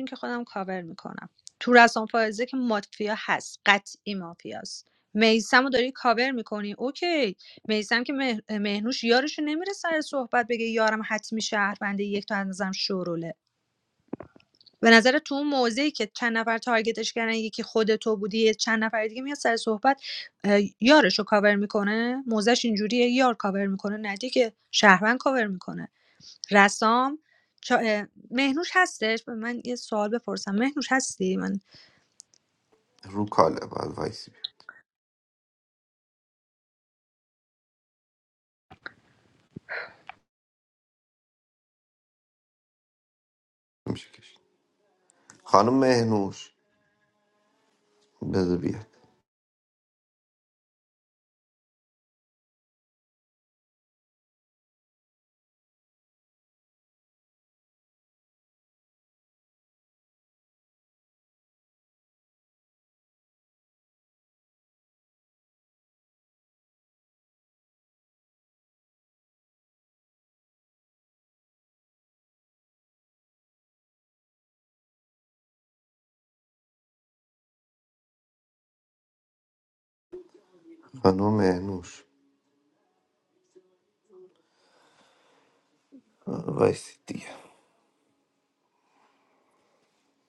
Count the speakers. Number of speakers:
2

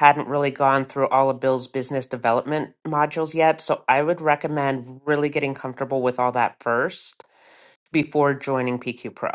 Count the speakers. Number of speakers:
1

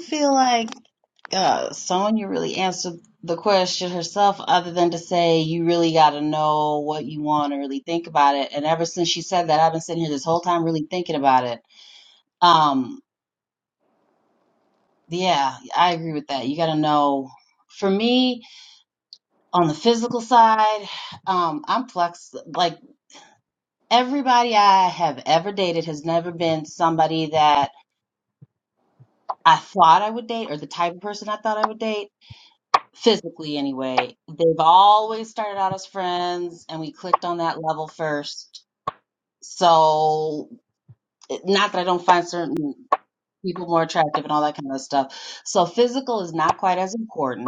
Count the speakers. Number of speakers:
1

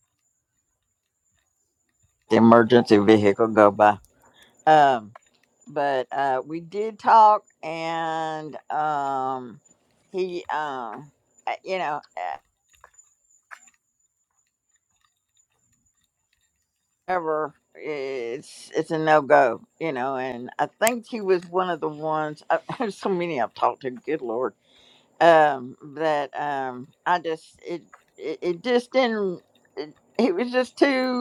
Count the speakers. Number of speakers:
1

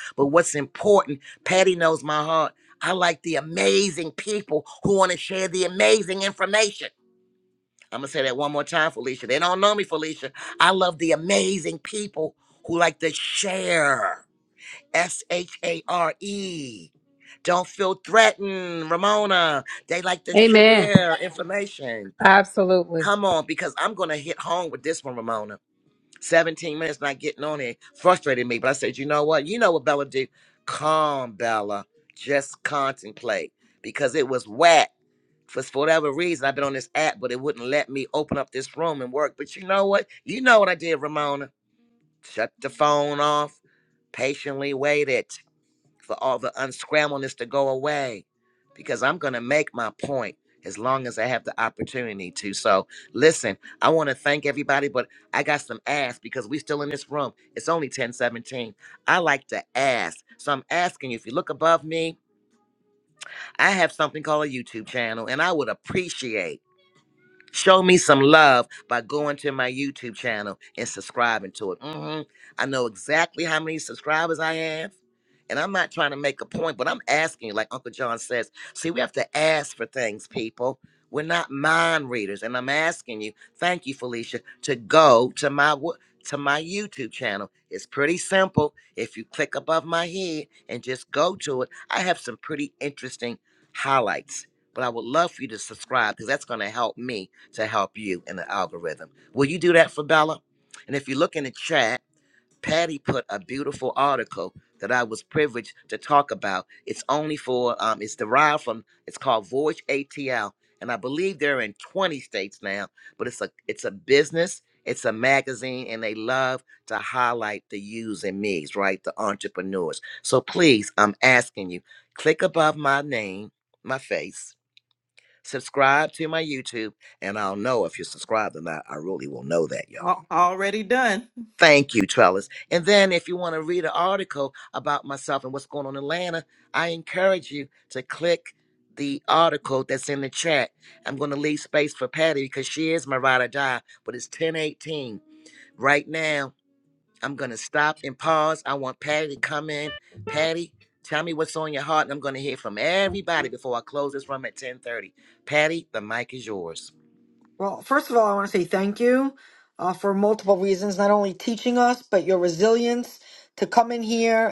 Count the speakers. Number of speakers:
4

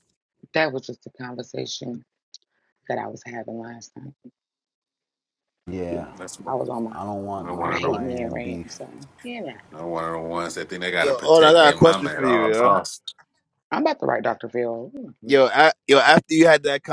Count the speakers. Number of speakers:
4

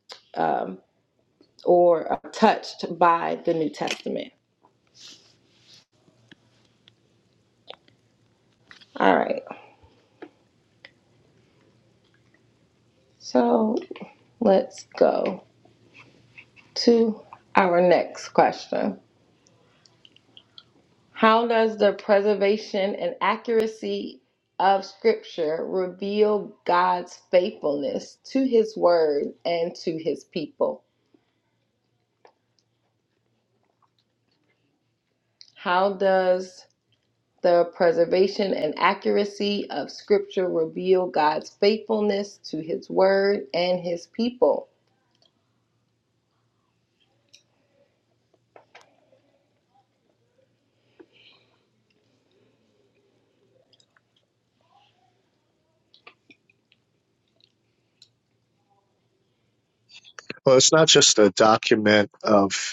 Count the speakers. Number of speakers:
2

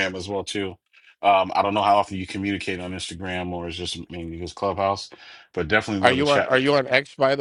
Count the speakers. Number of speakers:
2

